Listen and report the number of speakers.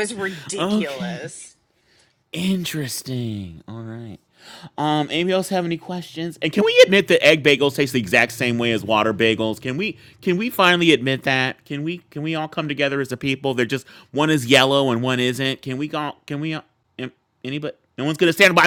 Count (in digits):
2